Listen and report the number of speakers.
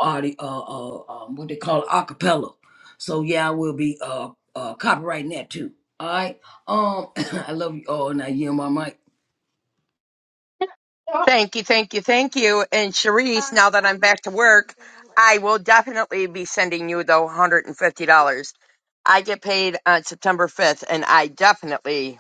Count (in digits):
2